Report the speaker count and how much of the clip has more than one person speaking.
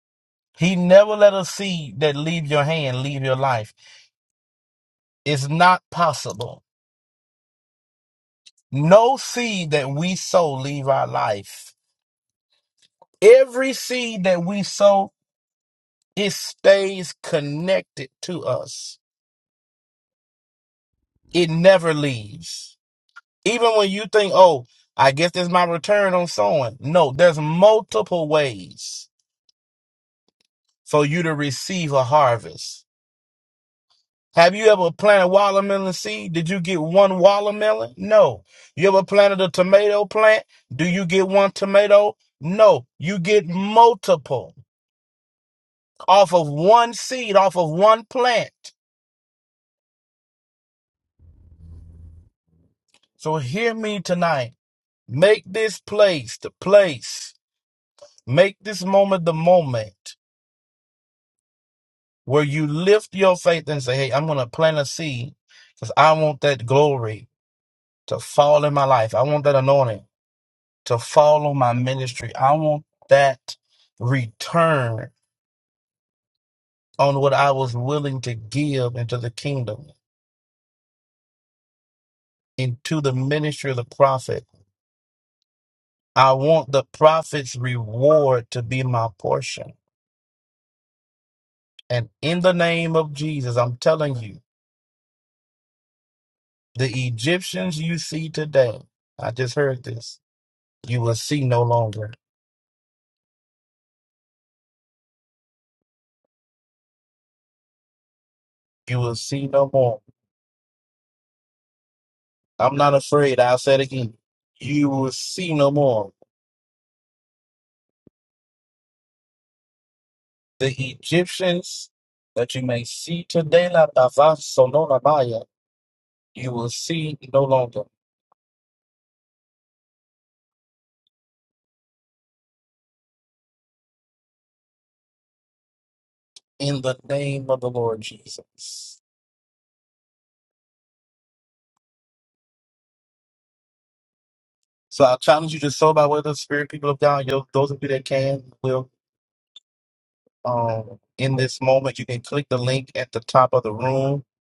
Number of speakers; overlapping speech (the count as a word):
one, no overlap